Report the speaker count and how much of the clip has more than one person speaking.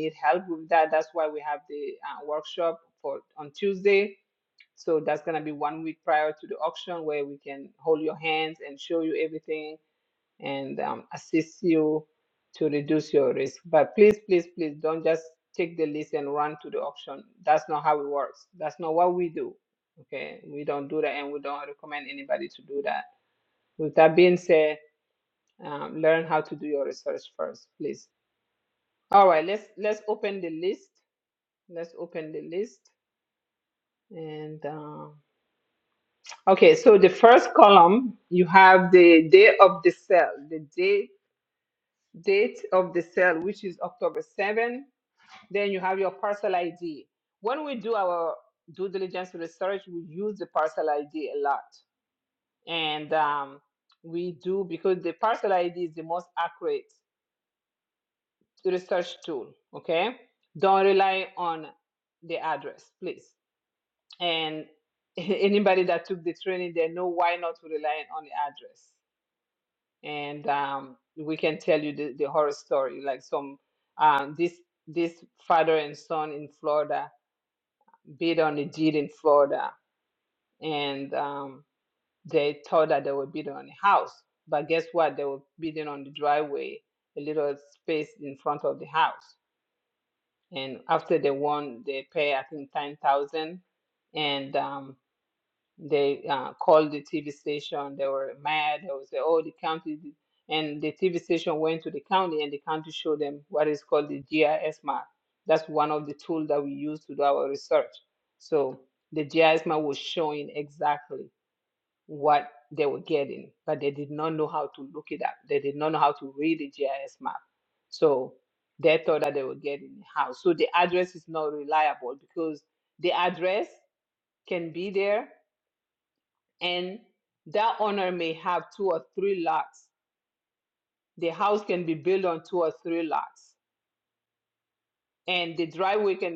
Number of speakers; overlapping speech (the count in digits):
1, no overlap